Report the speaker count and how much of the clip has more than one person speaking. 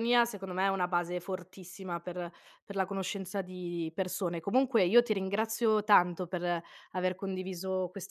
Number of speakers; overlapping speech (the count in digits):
1, no overlap